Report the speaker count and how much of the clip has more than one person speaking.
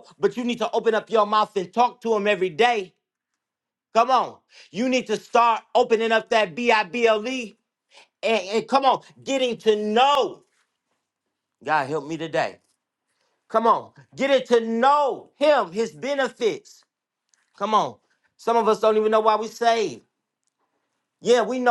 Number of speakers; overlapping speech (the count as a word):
one, no overlap